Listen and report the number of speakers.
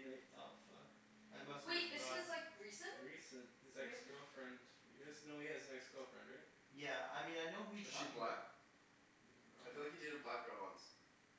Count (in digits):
4